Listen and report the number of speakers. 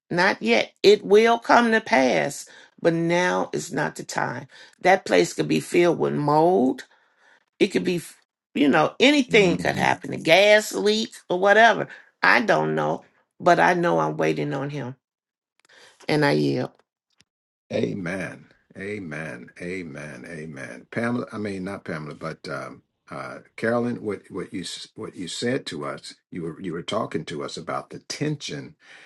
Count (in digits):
2